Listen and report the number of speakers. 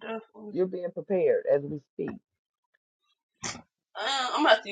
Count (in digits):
2